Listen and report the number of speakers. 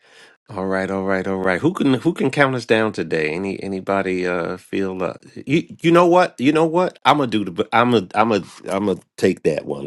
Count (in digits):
1